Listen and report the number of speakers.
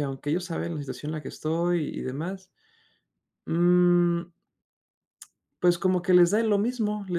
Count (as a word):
one